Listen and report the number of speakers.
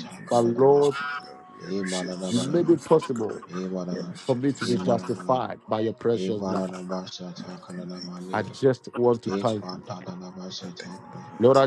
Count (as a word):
three